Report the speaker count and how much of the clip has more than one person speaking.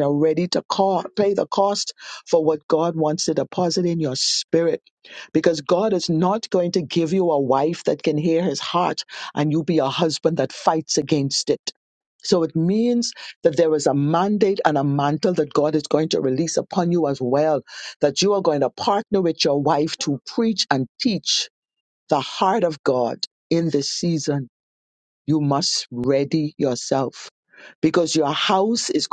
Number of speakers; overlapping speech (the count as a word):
one, no overlap